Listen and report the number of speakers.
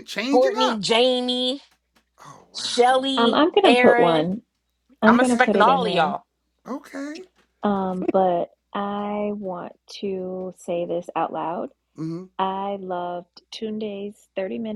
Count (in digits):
3